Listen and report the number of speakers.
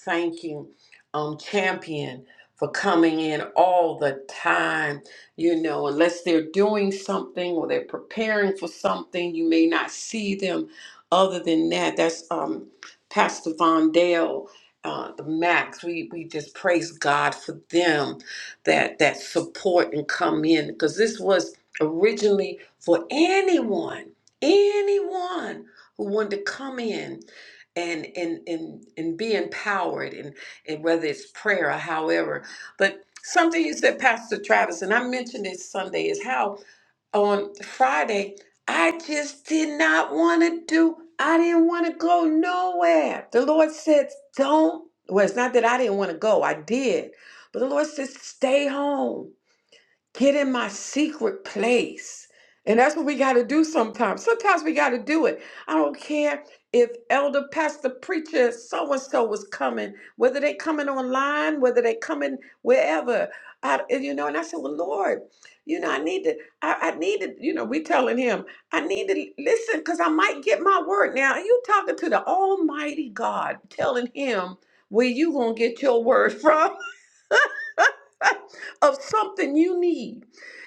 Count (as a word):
one